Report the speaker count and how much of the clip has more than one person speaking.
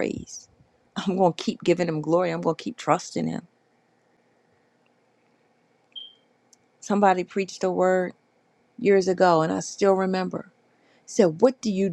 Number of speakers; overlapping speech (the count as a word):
one, no overlap